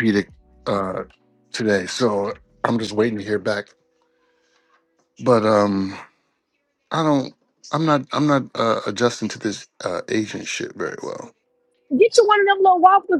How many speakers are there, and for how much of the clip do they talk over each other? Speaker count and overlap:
two, no overlap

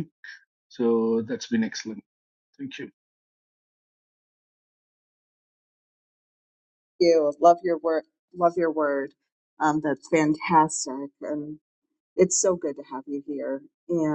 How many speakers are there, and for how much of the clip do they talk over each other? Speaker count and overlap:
two, no overlap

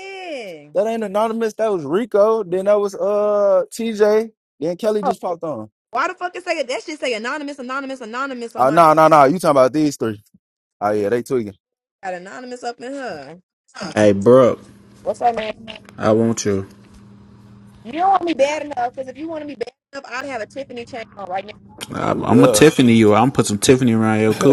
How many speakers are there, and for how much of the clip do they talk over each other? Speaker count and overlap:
three, about 4%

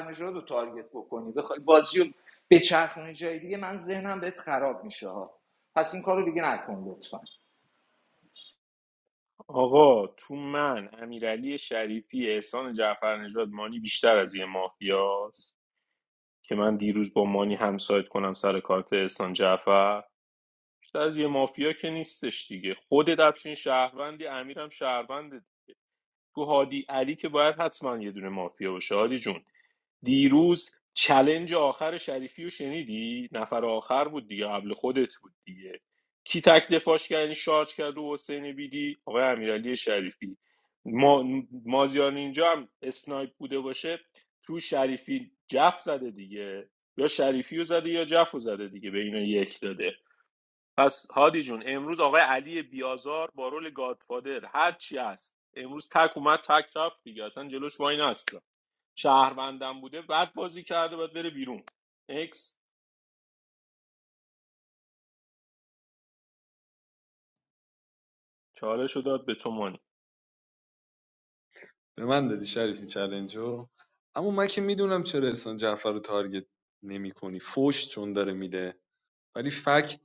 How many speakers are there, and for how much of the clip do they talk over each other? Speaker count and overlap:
three, no overlap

